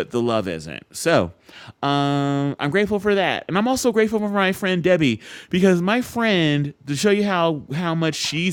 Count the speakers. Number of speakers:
1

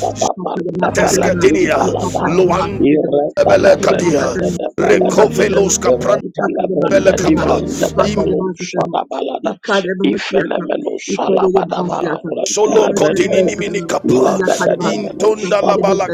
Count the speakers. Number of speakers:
3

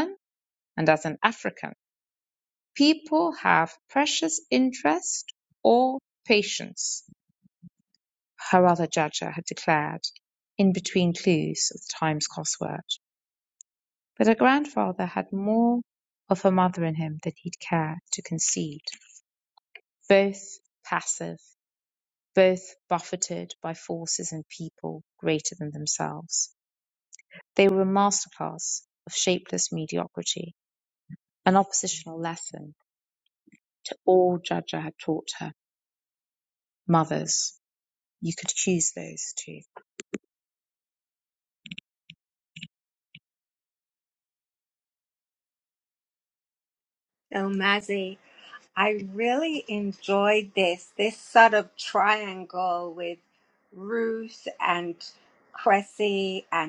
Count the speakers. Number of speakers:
2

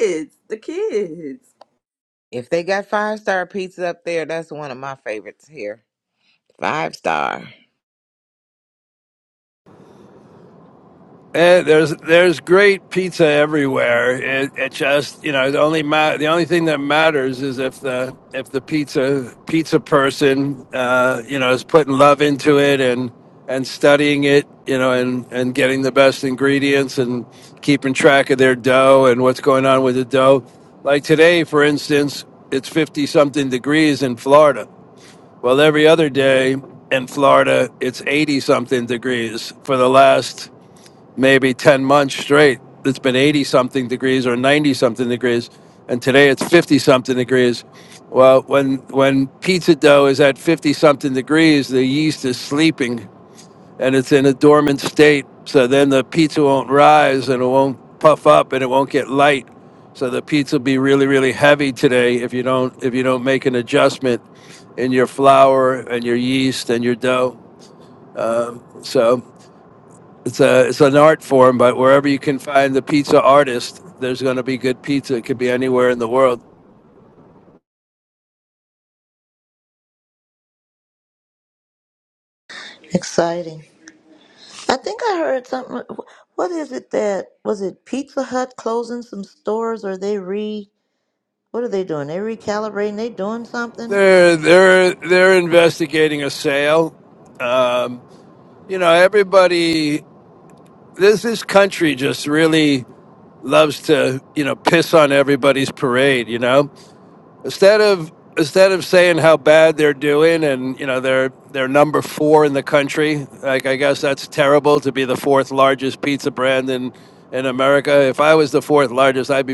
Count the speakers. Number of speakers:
4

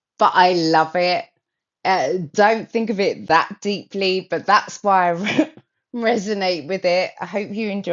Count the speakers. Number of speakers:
1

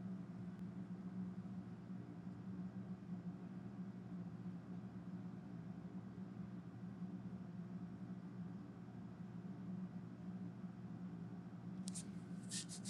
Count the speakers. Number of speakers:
0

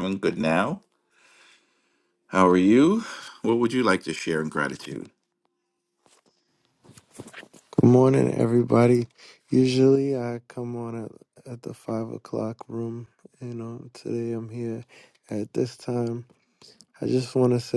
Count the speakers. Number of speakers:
2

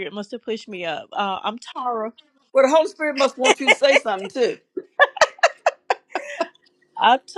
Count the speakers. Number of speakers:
2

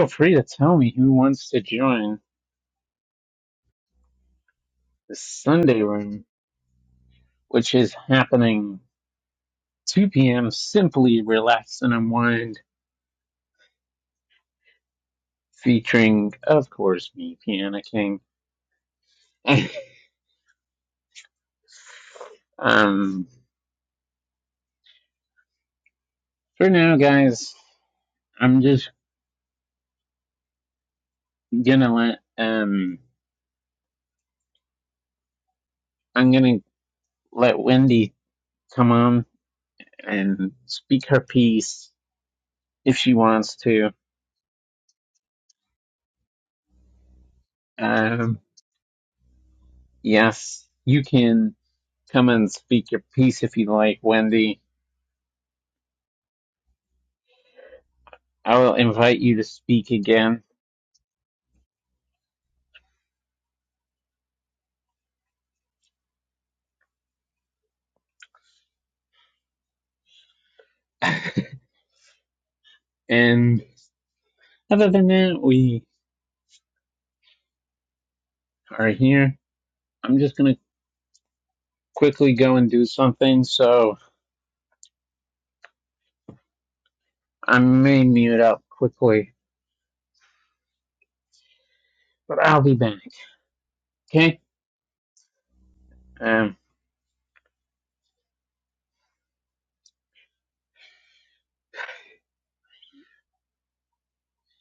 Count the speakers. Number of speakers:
1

